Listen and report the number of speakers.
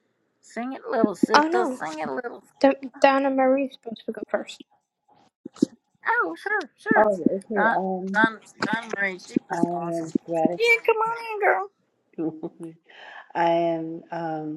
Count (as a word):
three